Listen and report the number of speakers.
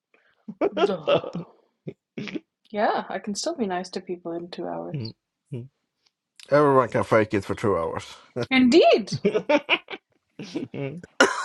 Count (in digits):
3